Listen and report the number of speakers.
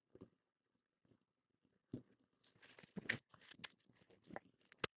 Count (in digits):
0